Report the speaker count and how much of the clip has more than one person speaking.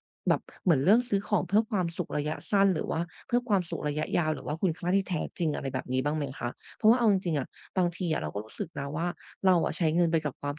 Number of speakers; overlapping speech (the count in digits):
1, no overlap